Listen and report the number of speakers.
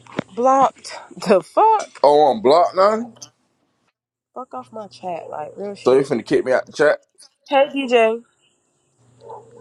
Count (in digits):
2